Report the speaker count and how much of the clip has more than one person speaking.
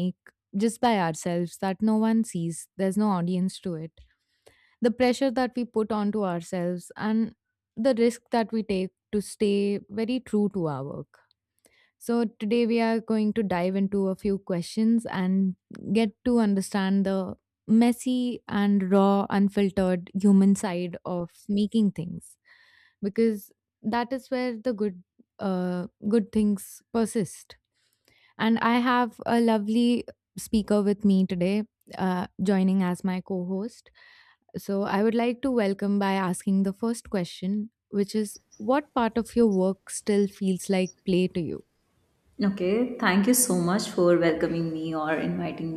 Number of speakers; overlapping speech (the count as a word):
two, no overlap